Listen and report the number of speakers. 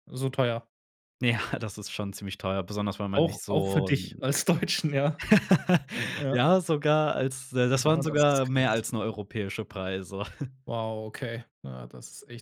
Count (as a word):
two